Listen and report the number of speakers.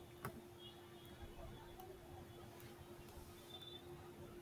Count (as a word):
zero